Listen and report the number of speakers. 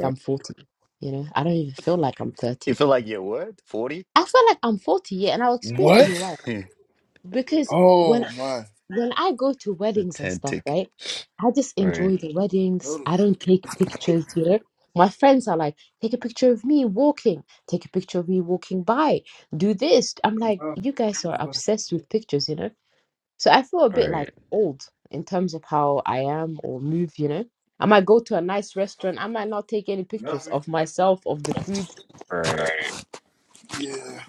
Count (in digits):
3